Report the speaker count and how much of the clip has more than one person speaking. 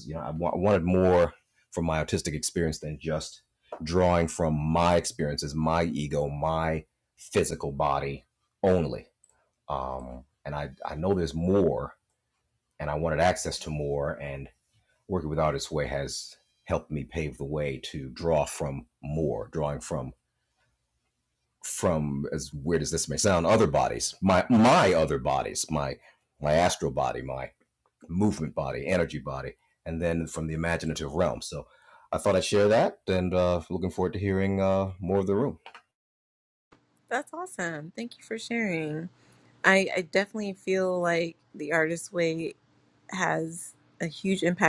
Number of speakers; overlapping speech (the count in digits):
2, no overlap